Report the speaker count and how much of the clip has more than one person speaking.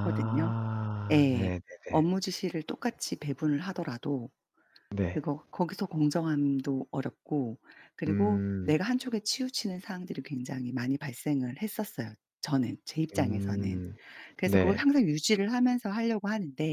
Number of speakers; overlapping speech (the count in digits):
2, about 16%